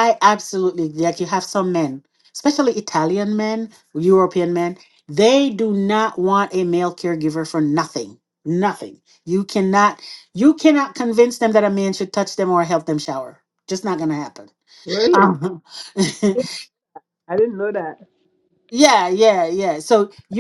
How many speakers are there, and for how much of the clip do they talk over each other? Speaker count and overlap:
two, about 1%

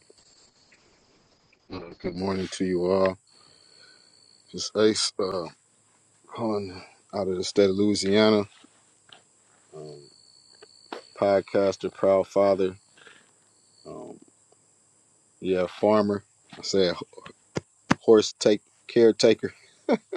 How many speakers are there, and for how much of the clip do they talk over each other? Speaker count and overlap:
one, no overlap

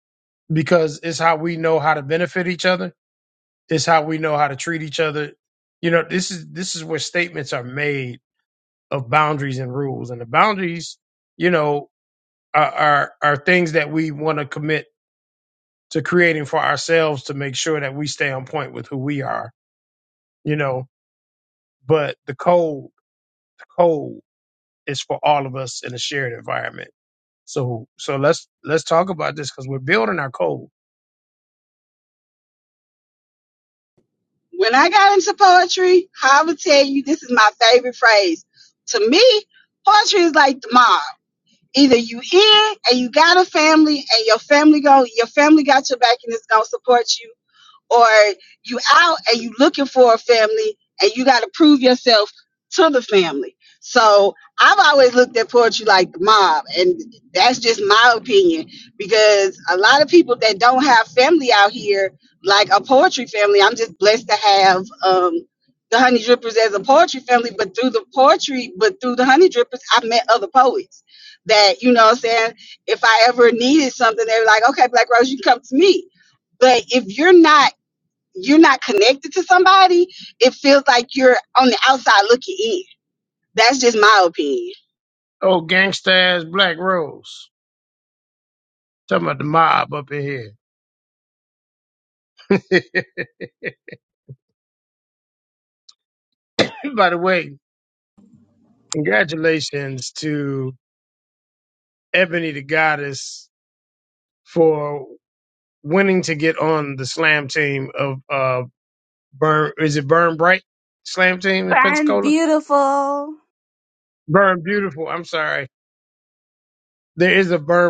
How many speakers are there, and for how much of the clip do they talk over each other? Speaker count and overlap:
three, about 1%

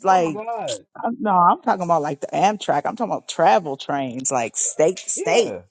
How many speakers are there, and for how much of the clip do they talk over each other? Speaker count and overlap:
two, about 12%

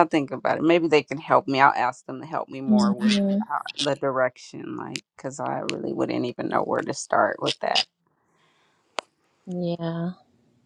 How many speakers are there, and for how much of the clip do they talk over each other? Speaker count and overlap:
two, about 7%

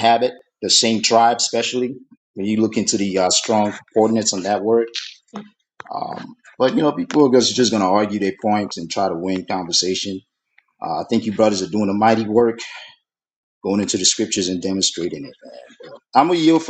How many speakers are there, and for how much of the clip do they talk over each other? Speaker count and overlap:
one, no overlap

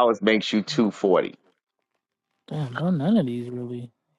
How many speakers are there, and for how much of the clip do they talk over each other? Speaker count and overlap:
two, no overlap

